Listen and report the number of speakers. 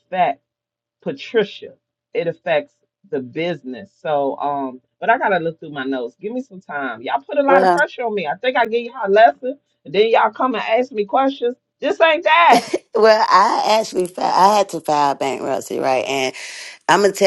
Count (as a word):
two